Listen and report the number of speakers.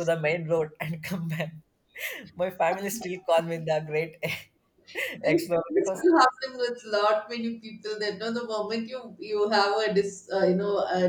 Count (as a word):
two